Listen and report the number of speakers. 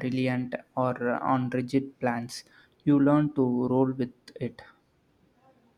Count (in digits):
1